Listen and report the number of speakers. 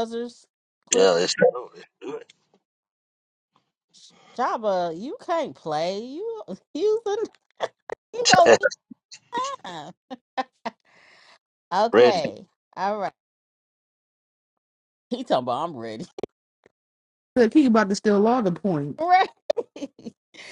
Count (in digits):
3